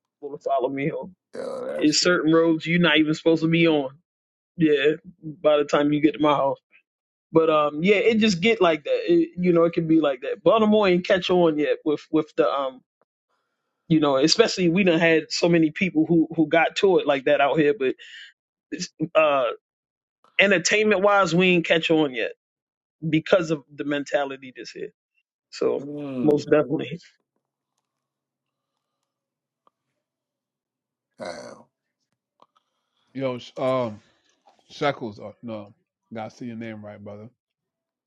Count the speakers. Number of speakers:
3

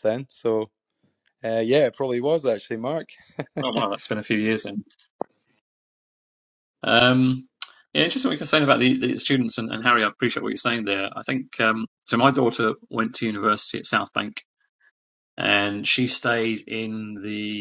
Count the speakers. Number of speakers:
2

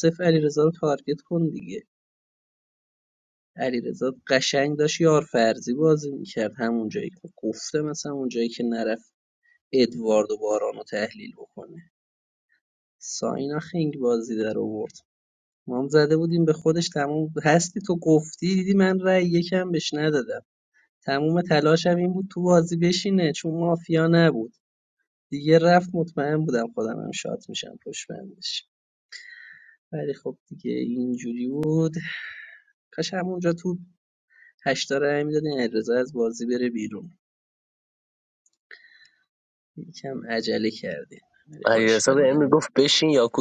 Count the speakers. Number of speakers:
2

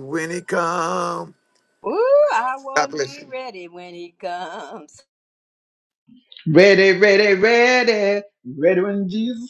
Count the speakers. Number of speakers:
3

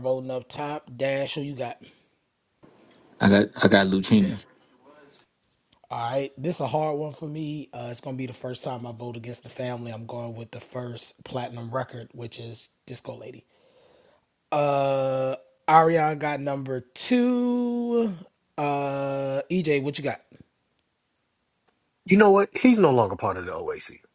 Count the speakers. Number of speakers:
3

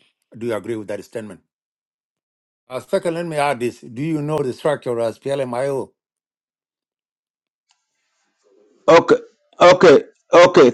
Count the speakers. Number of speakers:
2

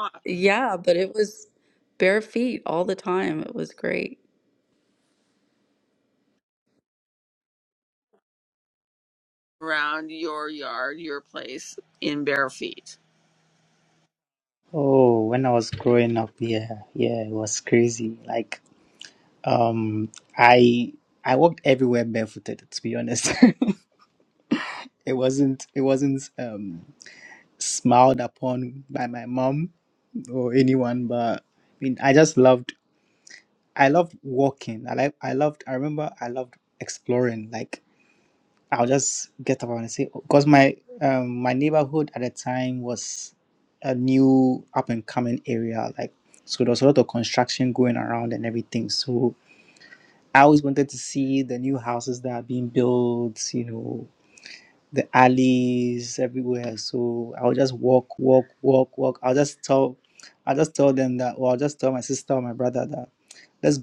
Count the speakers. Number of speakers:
3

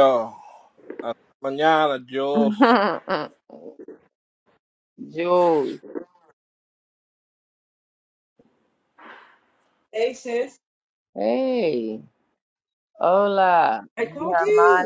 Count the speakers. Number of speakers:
3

